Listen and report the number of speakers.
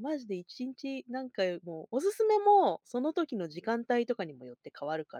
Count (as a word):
one